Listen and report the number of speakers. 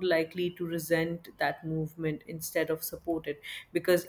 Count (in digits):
1